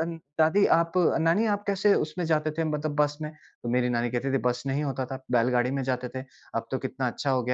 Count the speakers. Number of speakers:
1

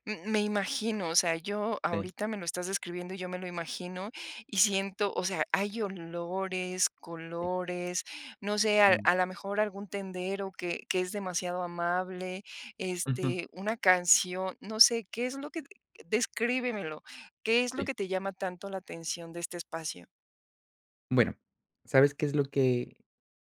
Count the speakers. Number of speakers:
2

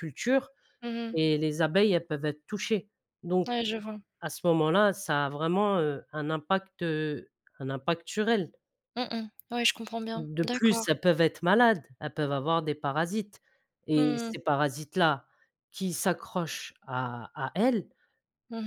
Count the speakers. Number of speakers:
2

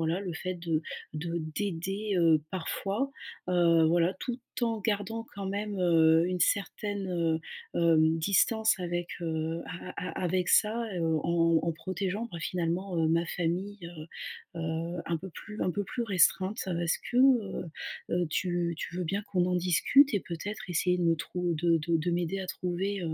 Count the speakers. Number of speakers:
1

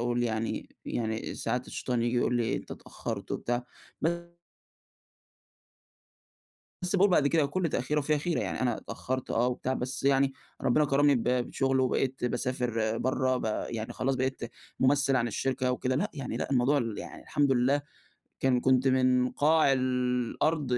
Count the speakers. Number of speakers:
1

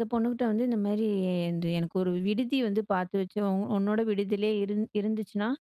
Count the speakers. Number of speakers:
1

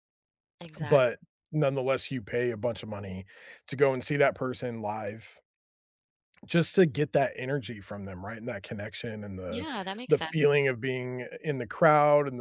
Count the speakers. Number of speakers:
2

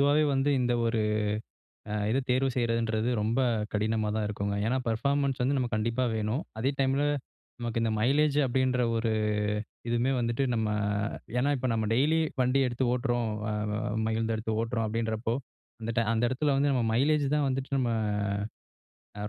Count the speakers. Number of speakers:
1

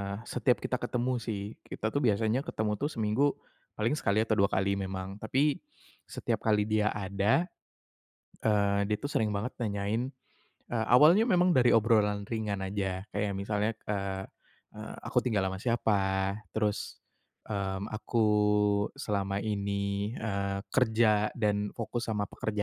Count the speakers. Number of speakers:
1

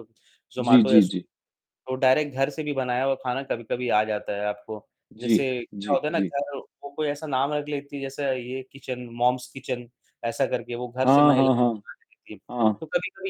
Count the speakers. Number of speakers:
2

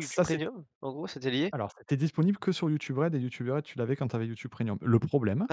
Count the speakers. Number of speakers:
2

